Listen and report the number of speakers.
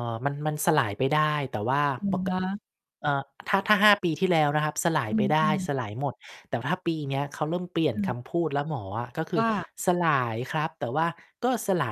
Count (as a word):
two